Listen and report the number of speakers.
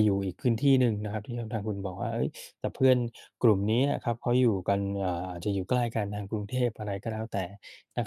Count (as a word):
one